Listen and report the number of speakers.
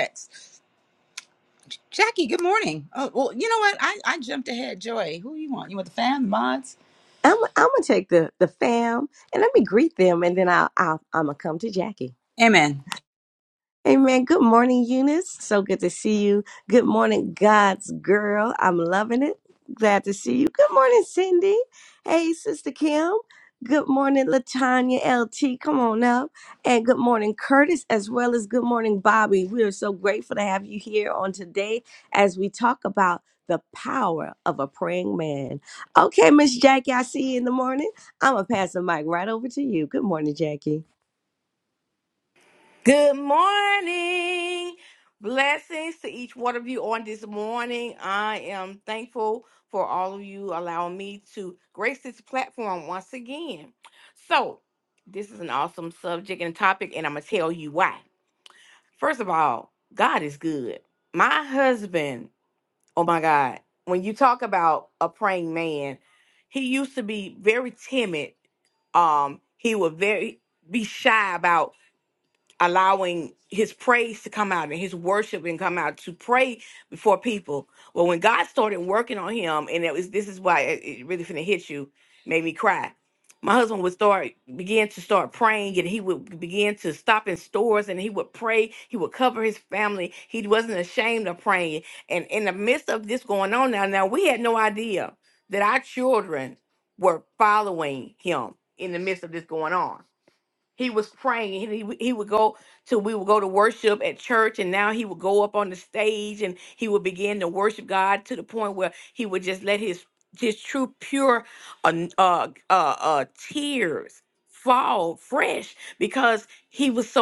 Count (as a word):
three